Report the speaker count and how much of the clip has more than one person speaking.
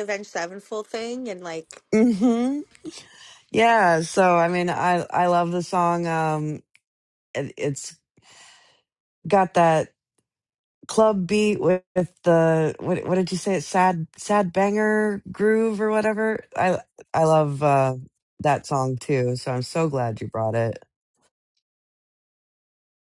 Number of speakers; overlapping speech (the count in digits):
2, no overlap